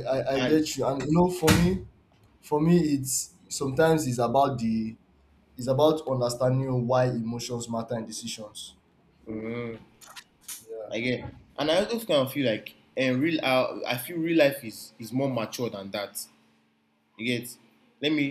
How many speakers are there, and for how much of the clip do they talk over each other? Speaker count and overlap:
2, about 2%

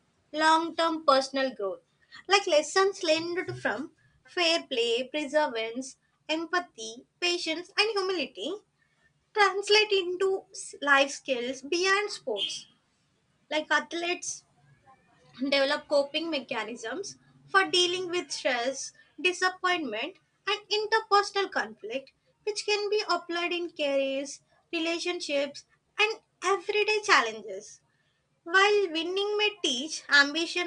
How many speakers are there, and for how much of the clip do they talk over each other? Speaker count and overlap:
1, no overlap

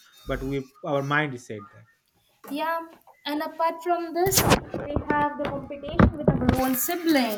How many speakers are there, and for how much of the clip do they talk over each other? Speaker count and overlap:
2, no overlap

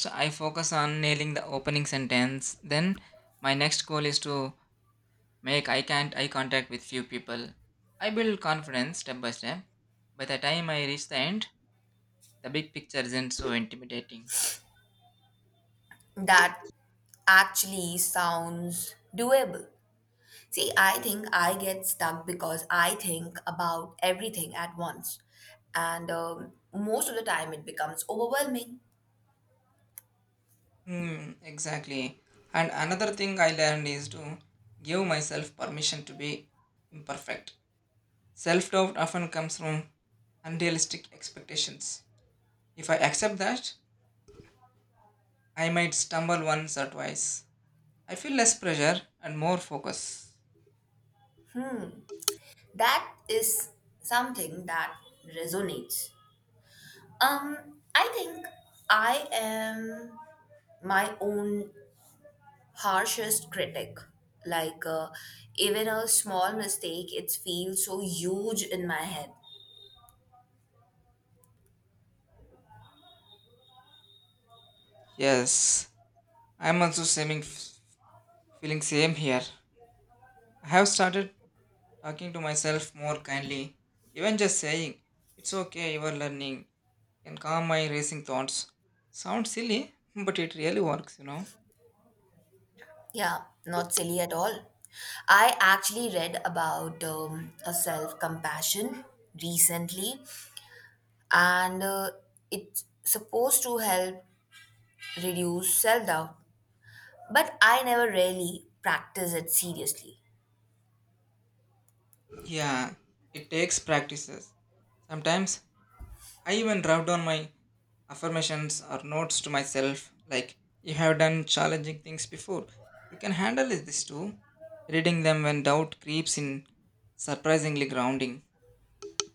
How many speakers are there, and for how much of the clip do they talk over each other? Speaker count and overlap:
2, no overlap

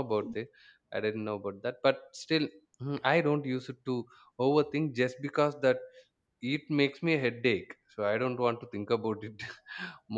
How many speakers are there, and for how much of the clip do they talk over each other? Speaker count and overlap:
1, no overlap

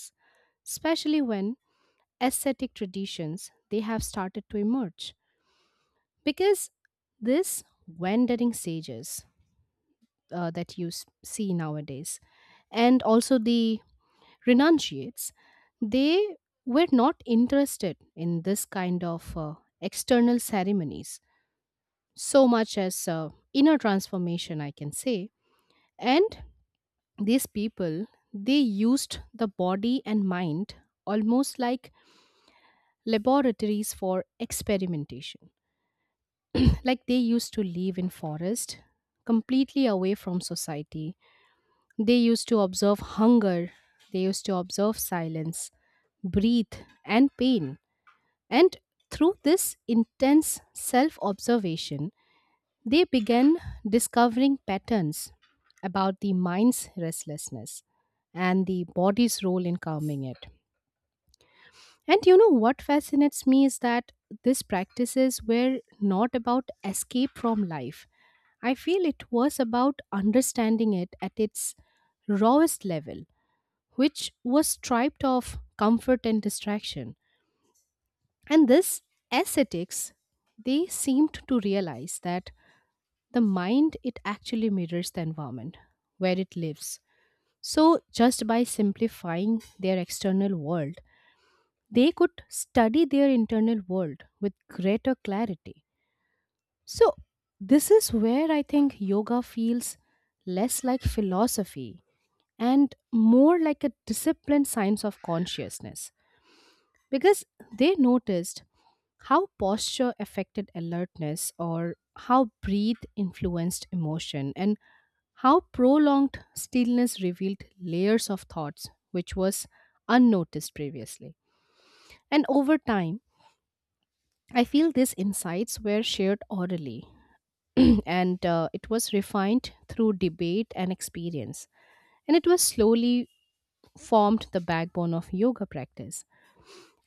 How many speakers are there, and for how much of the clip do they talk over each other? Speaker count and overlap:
1, no overlap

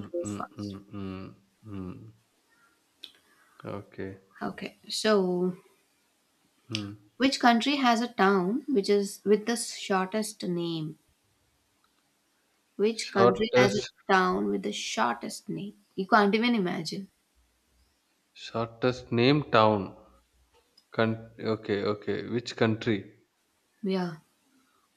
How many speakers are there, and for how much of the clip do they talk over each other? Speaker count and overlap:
2, about 6%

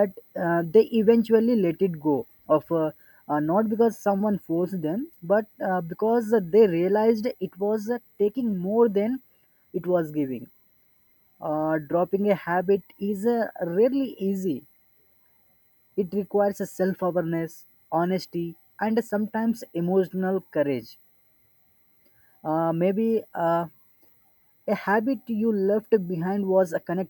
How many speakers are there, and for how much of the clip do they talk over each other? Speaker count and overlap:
1, no overlap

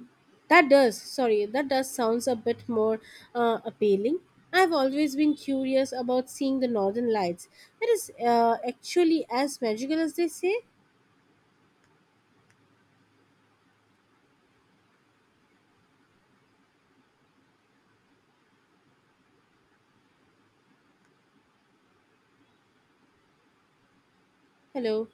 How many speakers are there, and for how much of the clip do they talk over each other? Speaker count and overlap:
1, no overlap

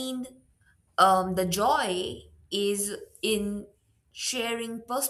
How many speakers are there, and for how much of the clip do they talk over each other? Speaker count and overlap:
1, no overlap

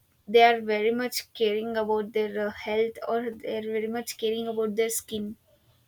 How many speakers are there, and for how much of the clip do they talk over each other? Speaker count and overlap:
1, no overlap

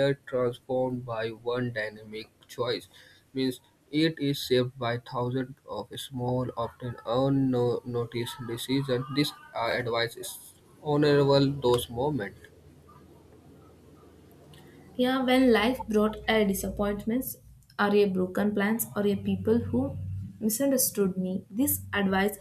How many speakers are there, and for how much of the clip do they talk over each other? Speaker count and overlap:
2, no overlap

